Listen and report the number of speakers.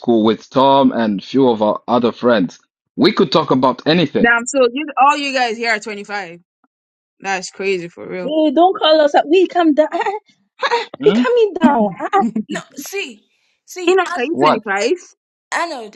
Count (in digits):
4